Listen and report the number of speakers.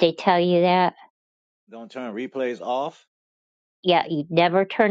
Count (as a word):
two